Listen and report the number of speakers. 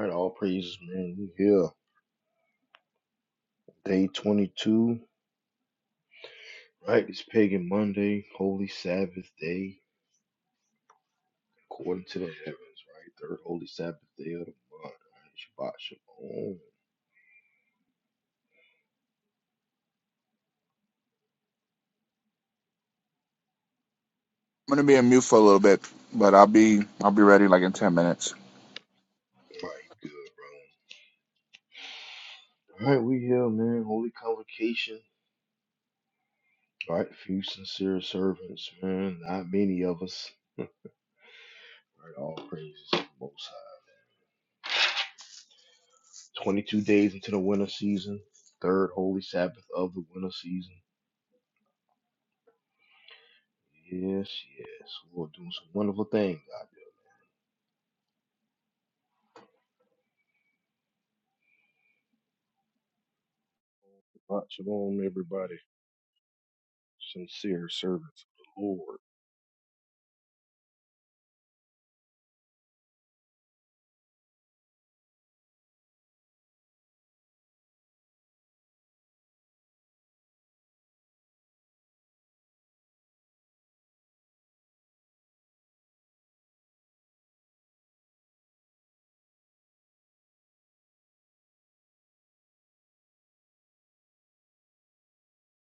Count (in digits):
3